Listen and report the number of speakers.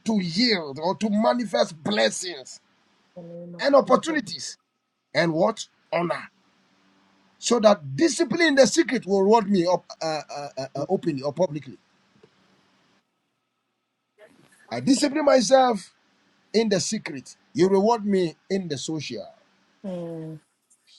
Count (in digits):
2